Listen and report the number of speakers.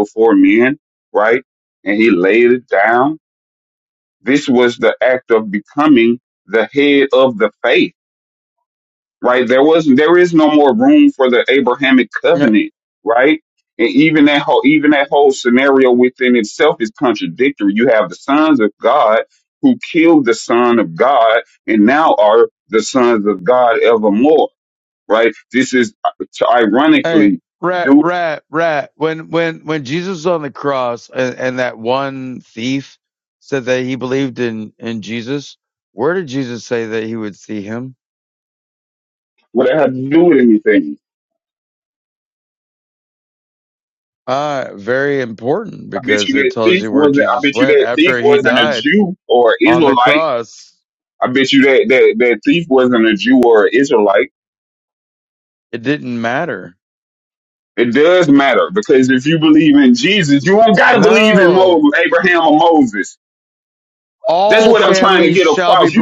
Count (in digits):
2